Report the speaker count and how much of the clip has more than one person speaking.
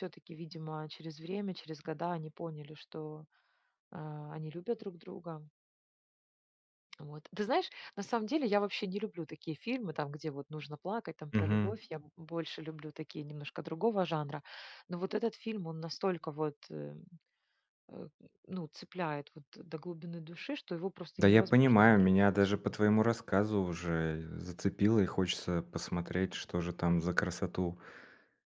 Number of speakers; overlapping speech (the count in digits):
2, about 5%